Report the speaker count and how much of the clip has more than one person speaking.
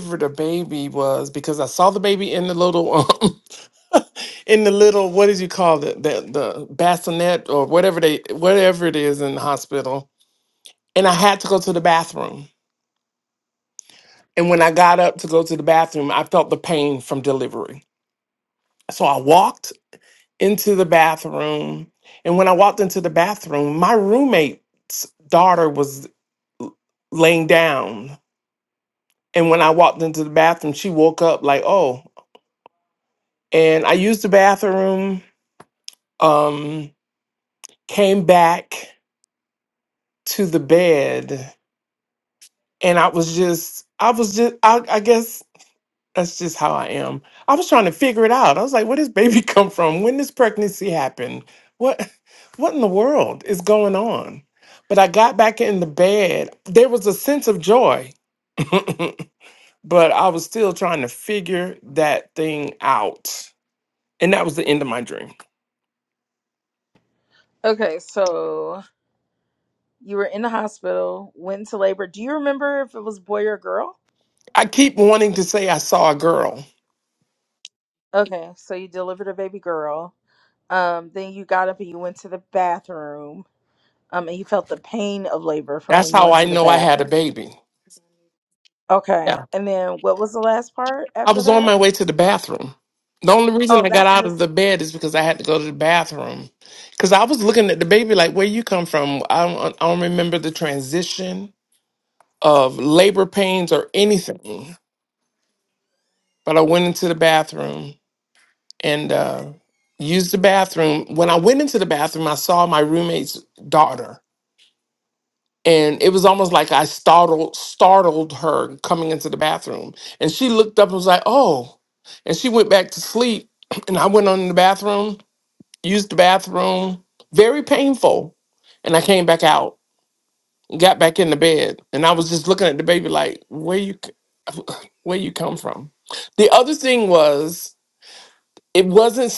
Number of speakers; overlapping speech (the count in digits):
2, about 2%